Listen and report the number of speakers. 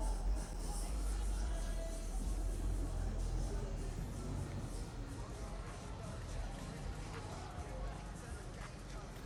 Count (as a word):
zero